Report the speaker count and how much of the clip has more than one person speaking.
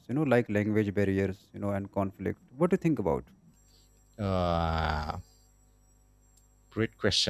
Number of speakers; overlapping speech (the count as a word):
two, no overlap